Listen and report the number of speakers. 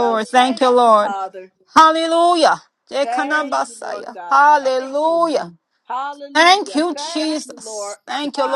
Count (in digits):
2